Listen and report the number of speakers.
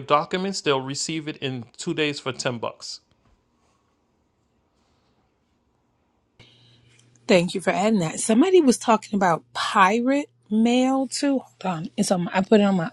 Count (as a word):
two